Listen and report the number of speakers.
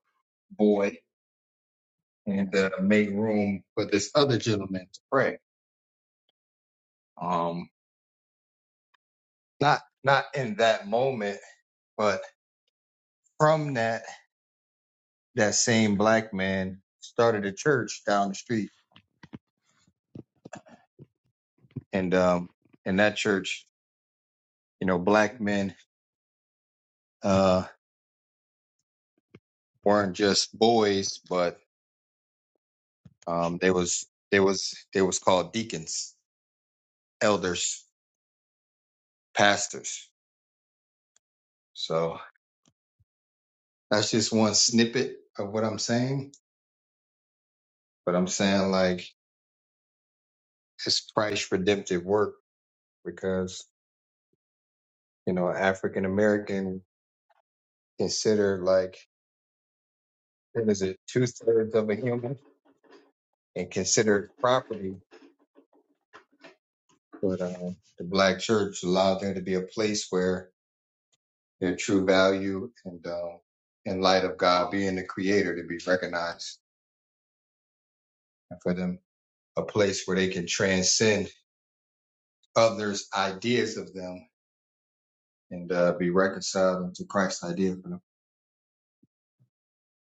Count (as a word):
one